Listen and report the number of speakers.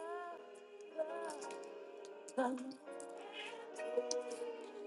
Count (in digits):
0